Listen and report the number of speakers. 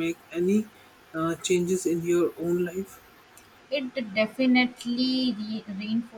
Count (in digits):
2